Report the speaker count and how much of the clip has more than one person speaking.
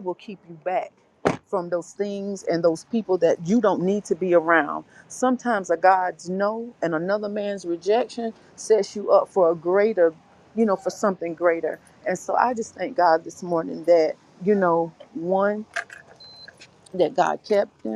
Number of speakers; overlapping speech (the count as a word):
one, no overlap